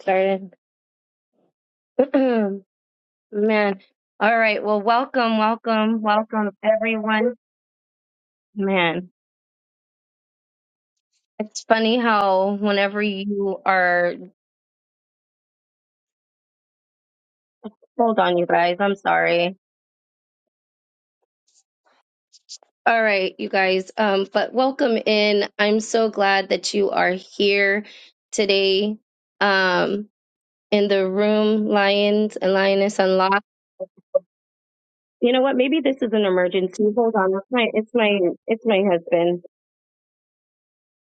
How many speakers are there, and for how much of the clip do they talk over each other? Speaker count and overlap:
one, no overlap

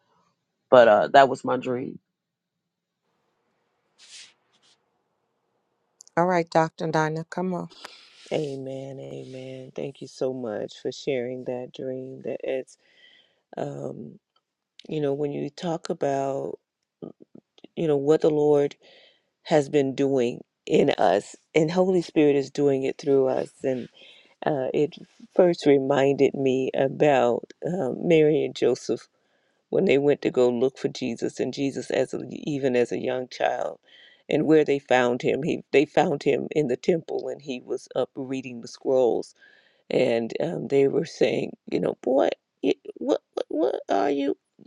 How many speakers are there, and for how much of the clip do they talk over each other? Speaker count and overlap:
three, no overlap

